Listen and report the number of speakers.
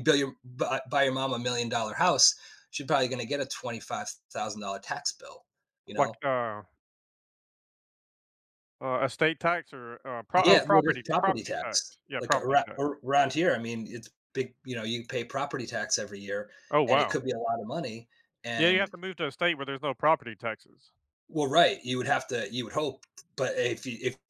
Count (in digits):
2